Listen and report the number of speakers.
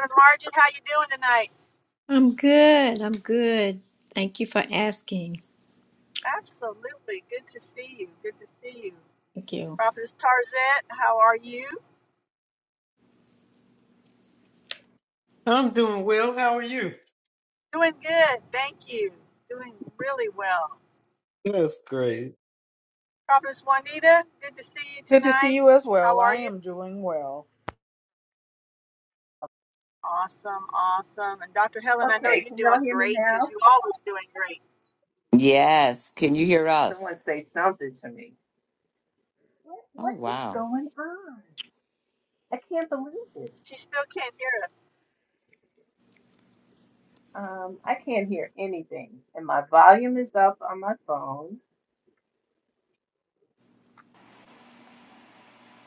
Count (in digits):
6